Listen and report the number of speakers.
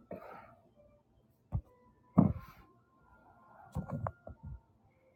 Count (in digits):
0